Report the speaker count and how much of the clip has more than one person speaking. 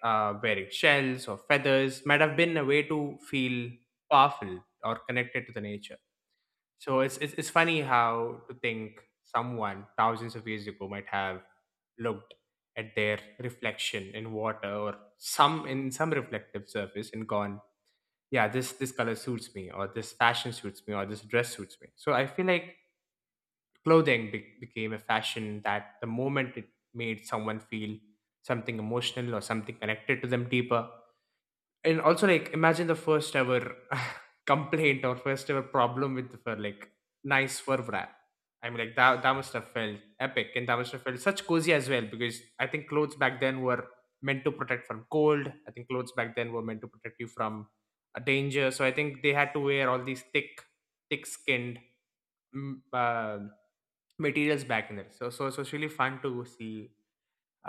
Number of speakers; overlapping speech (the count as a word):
one, no overlap